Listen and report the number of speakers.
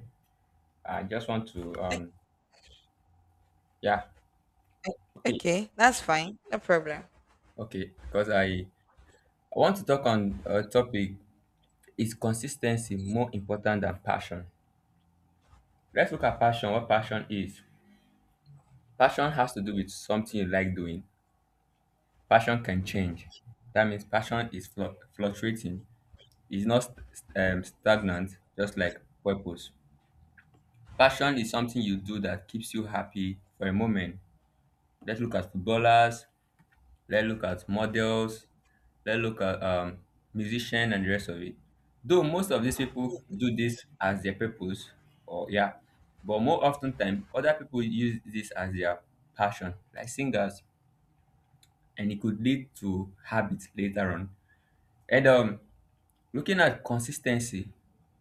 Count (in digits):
2